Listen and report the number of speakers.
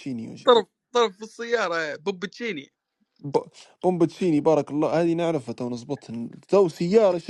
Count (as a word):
two